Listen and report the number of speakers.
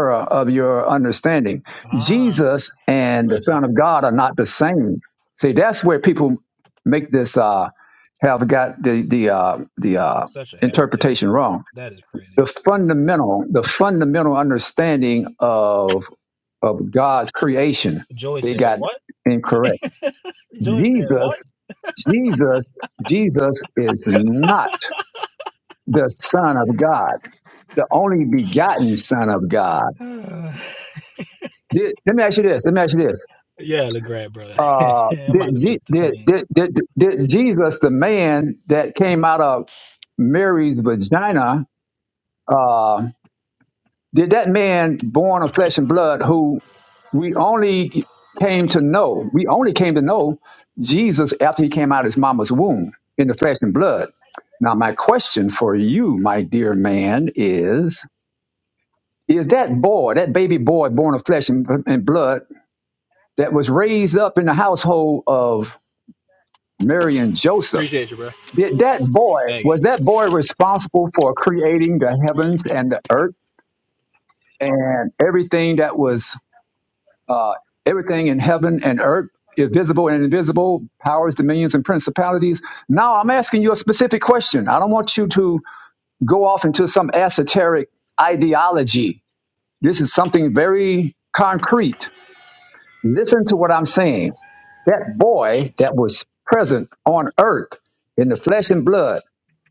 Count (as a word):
two